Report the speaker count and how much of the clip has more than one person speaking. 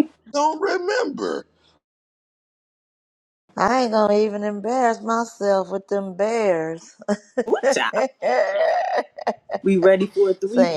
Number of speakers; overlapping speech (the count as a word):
three, about 2%